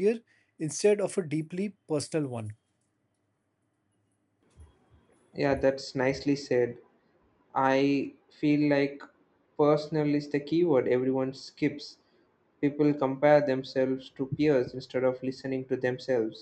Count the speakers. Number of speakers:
two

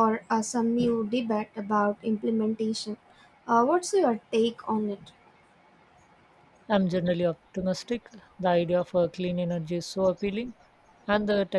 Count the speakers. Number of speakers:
two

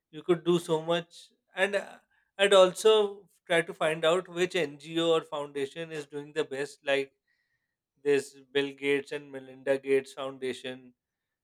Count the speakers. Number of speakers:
one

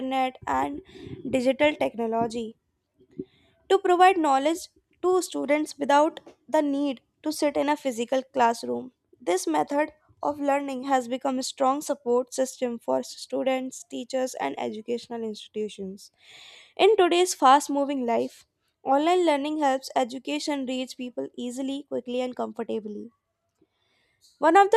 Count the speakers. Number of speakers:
one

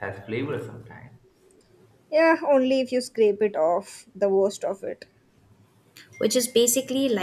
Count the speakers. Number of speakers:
three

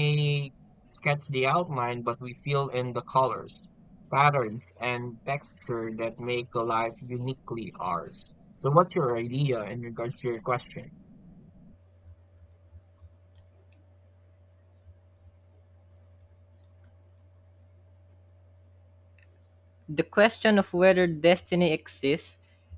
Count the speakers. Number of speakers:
two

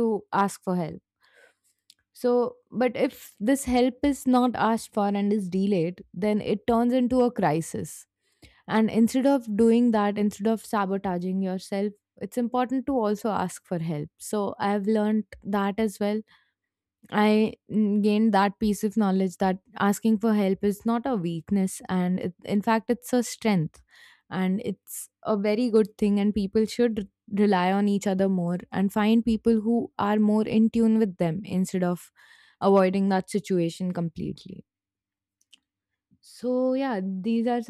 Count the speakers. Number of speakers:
one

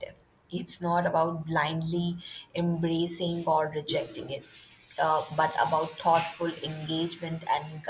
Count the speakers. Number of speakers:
one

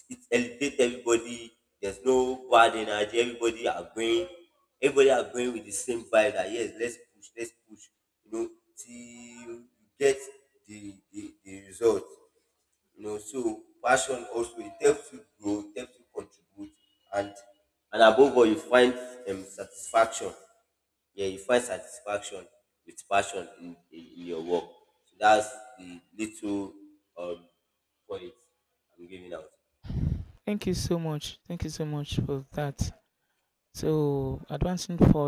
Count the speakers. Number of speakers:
two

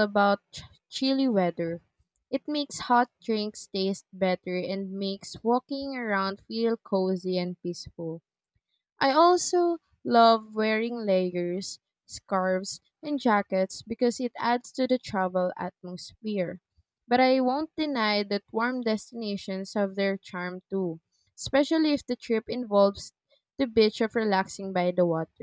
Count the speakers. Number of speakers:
one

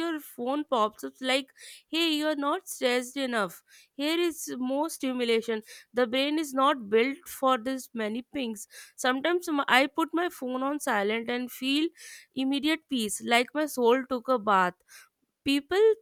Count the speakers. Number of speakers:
one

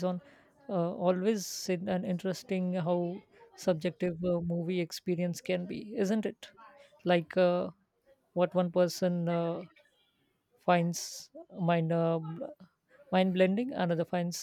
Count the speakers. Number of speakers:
one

